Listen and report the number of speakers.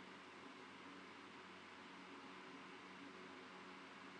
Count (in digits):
0